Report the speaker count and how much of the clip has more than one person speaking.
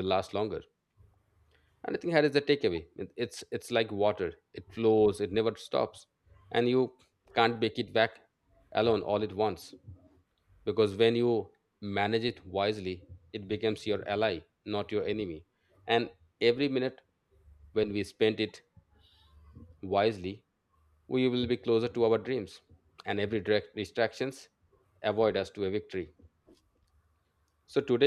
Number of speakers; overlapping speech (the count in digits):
1, no overlap